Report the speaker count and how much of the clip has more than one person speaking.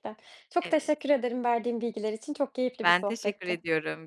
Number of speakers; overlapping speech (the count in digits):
2, about 25%